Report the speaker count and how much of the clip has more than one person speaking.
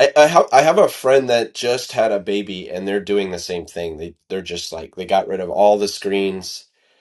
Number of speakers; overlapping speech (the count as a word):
one, no overlap